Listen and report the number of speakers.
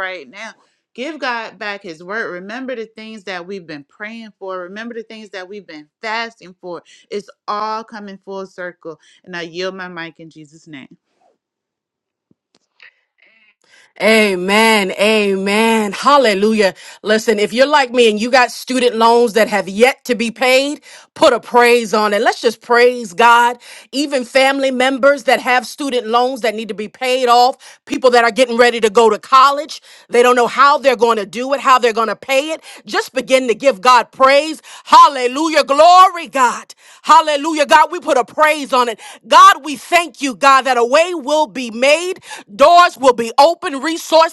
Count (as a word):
two